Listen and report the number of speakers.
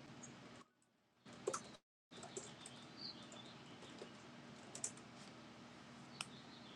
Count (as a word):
zero